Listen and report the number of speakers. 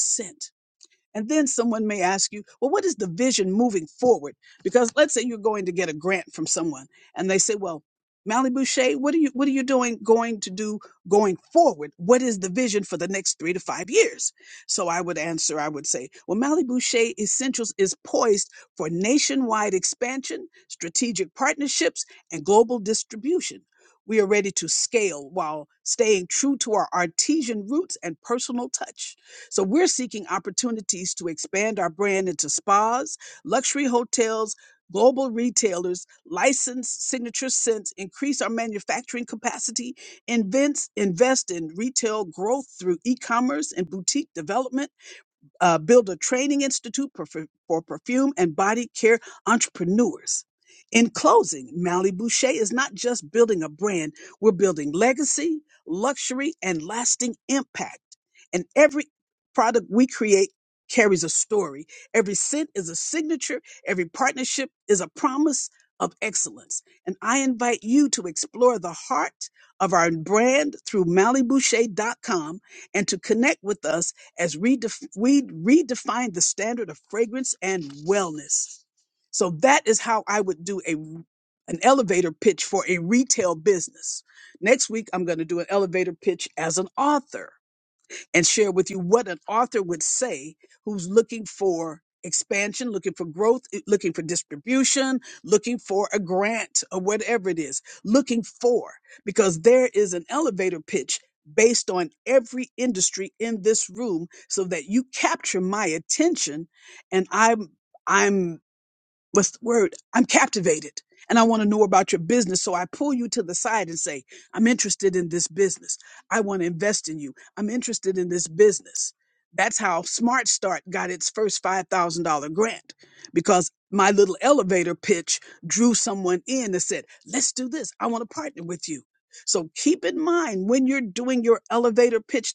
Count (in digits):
1